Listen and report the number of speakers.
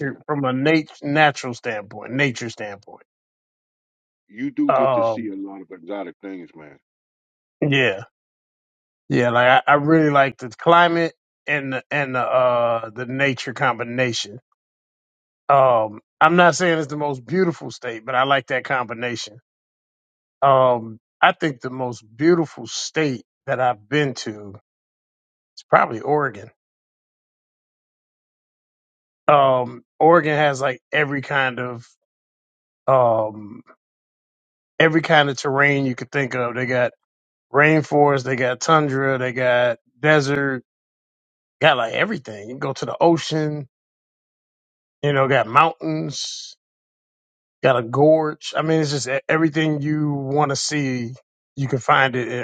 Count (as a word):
two